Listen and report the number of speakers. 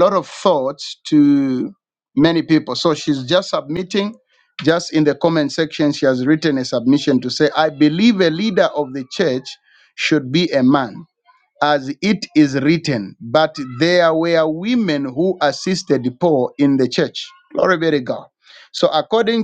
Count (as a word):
one